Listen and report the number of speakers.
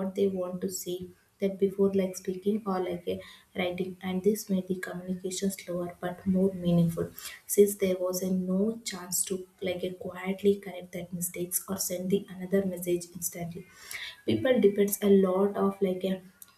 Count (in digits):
1